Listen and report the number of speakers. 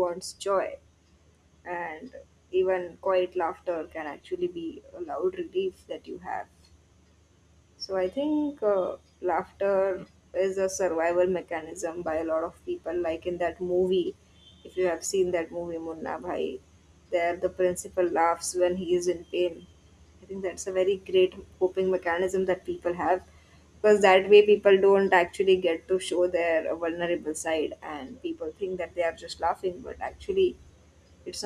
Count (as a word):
one